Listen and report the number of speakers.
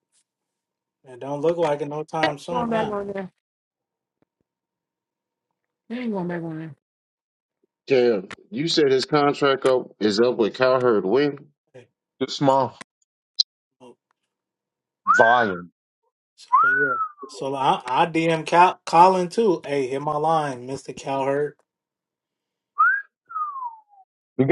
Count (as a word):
four